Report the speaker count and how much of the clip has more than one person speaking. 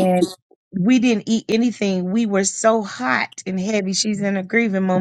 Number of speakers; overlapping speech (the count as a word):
one, no overlap